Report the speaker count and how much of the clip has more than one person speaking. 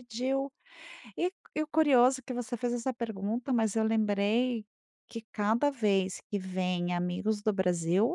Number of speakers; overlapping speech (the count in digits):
1, no overlap